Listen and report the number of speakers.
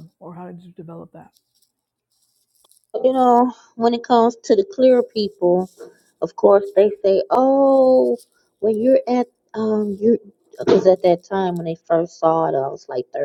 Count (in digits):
2